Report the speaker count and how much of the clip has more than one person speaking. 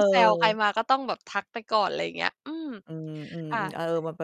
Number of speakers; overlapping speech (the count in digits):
2, about 16%